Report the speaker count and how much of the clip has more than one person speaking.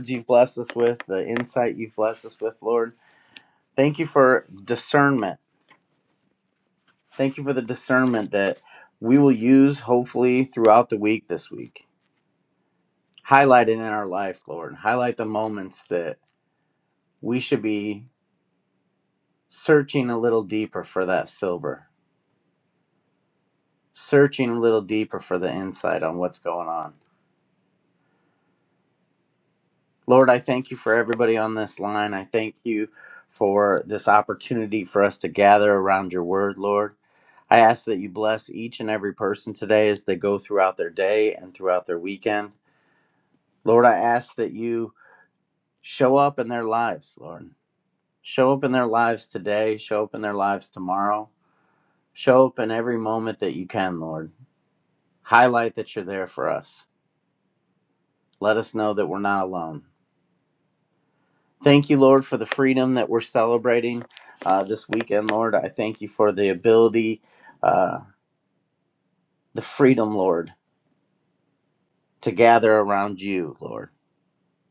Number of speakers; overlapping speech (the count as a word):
one, no overlap